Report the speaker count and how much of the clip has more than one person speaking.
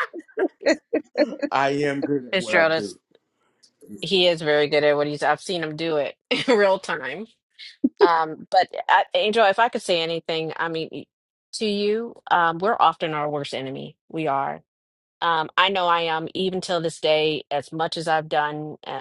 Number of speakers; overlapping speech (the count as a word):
two, about 3%